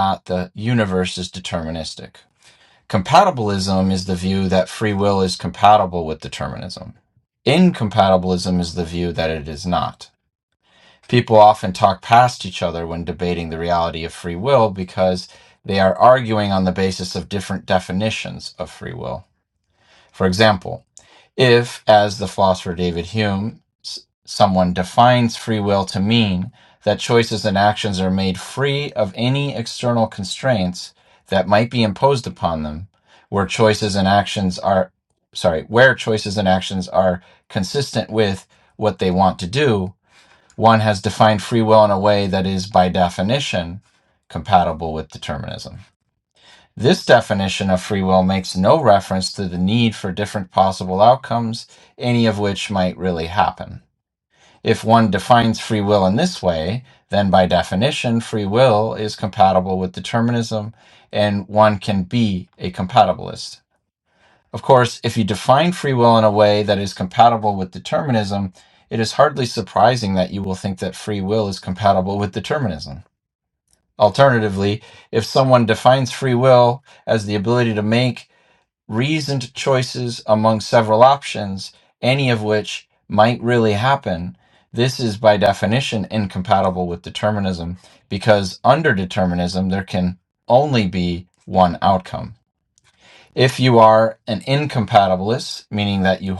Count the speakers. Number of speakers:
1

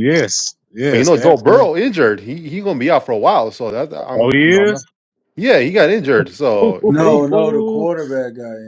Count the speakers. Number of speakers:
3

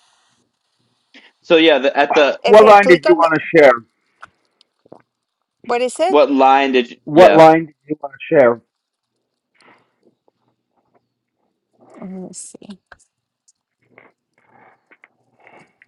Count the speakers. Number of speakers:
3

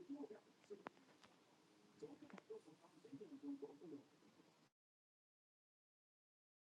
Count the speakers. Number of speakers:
0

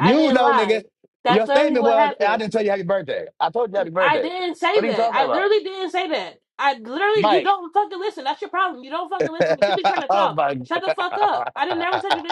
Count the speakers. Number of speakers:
2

